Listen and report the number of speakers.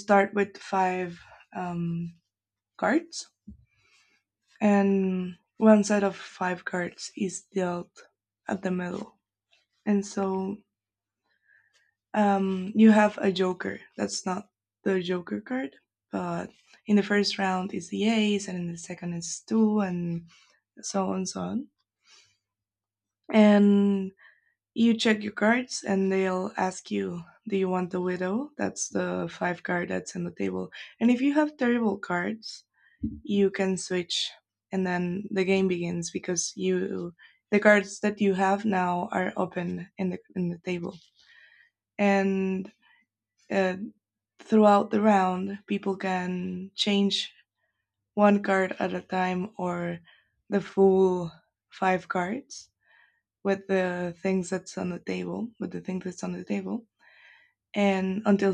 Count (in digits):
1